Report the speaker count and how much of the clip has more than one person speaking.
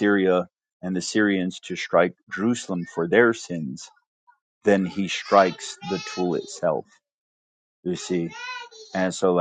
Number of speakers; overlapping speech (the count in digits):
1, no overlap